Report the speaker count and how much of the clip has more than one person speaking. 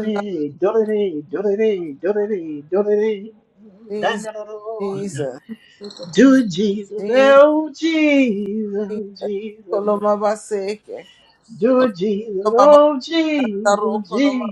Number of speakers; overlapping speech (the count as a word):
two, about 14%